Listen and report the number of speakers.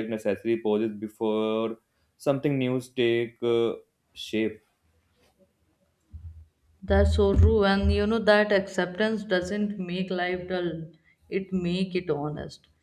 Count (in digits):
2